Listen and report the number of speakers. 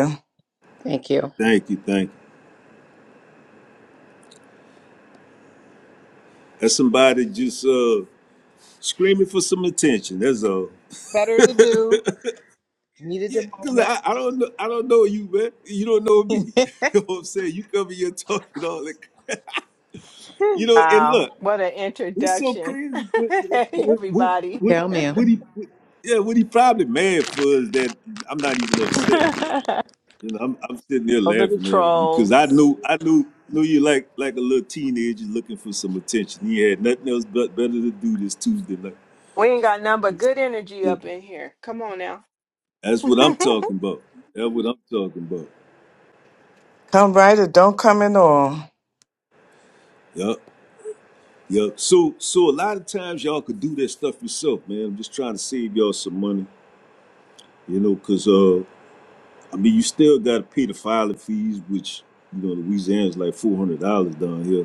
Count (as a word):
four